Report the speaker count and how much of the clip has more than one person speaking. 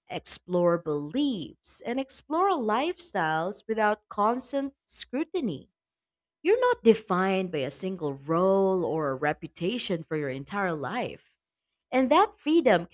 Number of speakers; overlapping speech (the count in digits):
1, no overlap